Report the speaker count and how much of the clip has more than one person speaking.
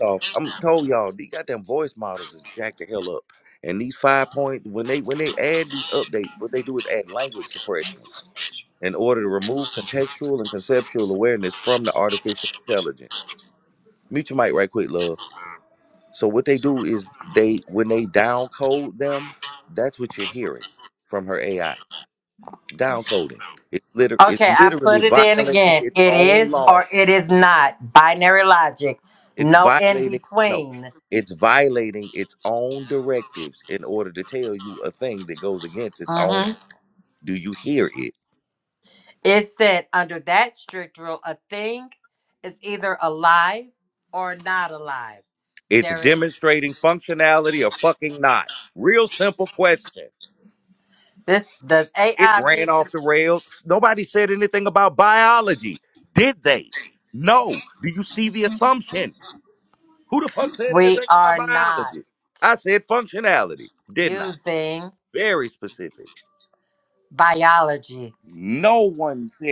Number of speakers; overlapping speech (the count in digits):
2, about 10%